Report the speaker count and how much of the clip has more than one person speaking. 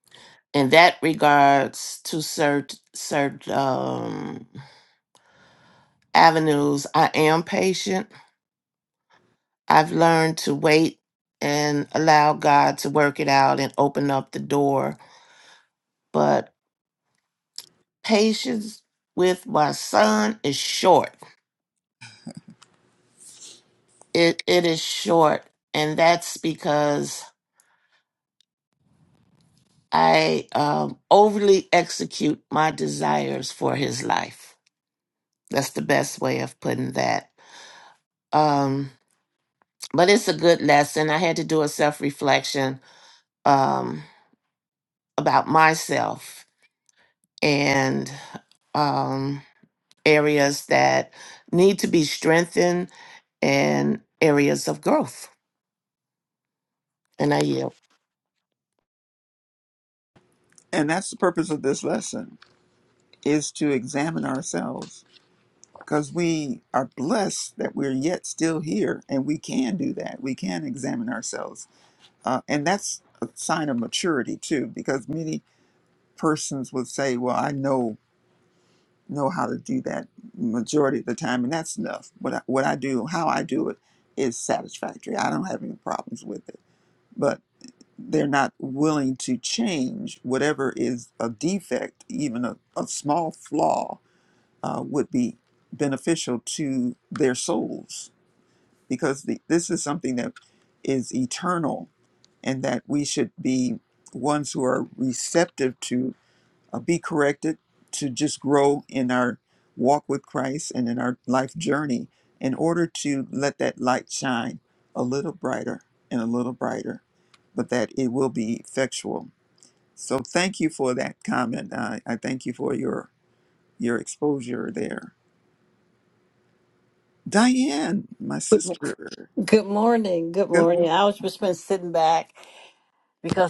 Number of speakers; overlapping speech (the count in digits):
3, under 1%